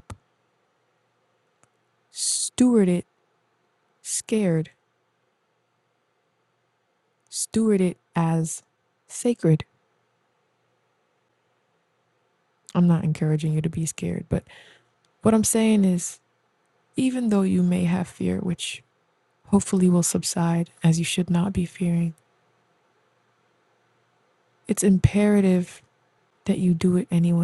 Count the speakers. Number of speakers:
one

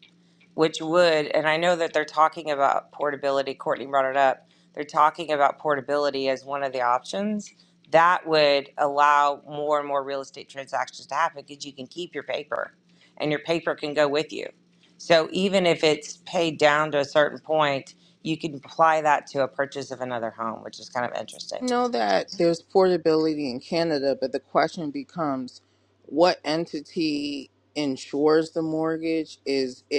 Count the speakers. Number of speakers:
two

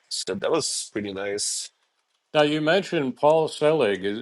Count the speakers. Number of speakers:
two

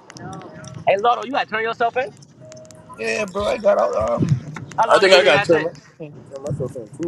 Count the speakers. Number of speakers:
three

